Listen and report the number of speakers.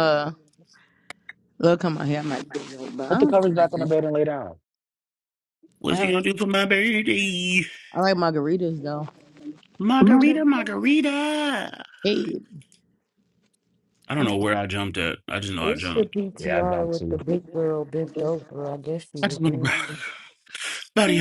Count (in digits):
4